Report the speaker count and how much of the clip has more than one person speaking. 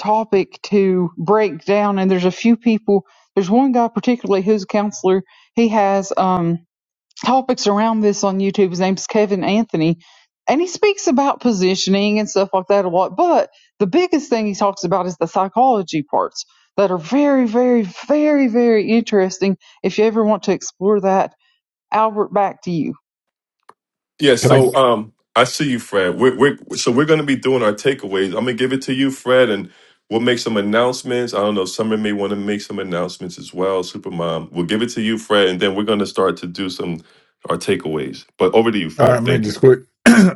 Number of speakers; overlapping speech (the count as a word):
three, about 2%